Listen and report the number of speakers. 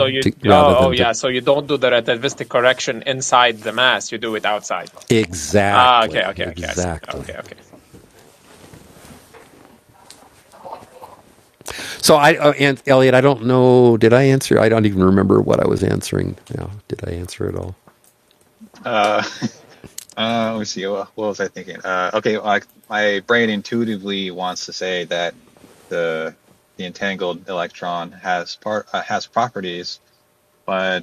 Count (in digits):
3